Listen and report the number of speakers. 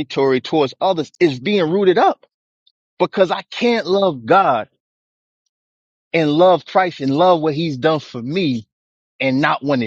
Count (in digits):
1